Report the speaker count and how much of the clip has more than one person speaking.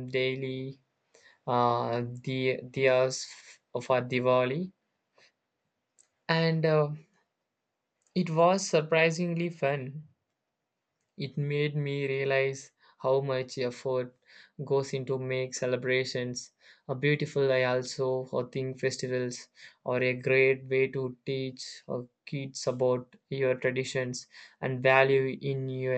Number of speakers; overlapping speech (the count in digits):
1, no overlap